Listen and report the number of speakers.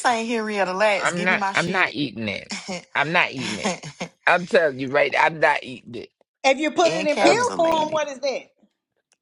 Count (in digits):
3